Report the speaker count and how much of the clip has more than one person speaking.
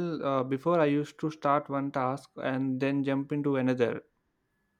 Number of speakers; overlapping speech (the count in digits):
1, no overlap